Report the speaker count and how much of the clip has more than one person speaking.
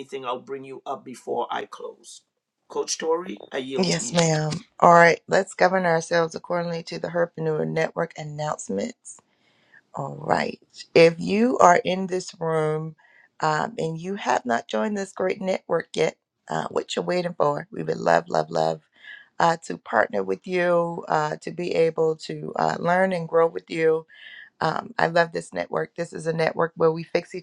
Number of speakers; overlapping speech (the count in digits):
2, about 2%